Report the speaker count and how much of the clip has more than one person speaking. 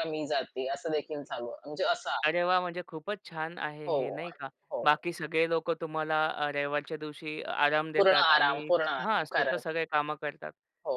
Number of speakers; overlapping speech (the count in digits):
2, about 19%